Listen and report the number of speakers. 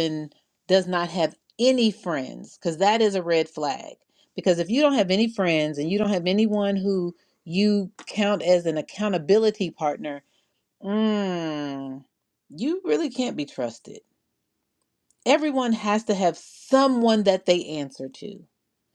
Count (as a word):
one